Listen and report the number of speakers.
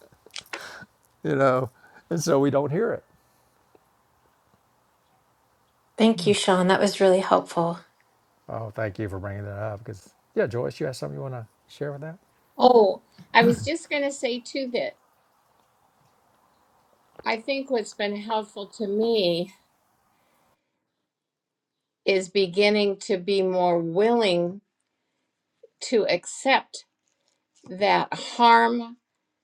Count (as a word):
three